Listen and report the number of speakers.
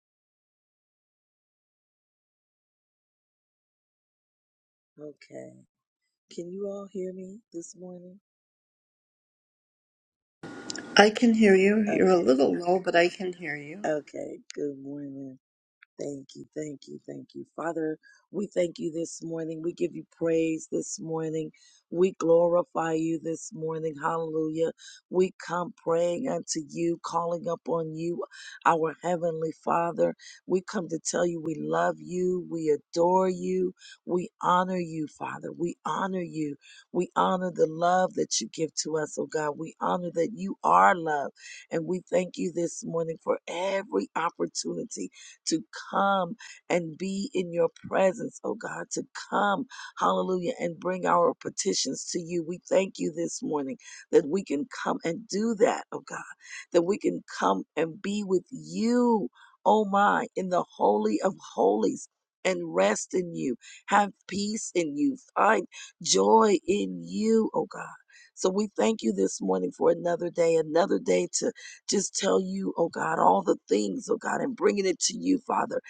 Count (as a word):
two